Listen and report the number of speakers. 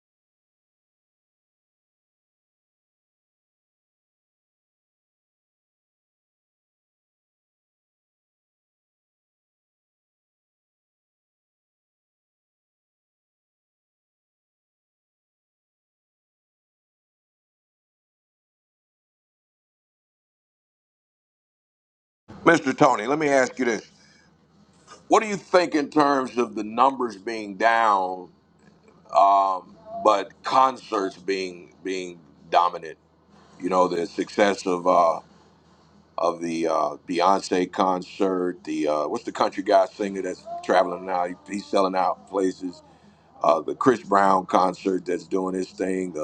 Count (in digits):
1